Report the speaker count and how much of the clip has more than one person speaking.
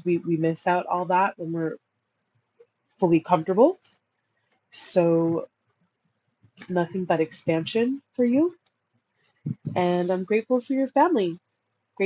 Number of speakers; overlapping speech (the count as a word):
one, no overlap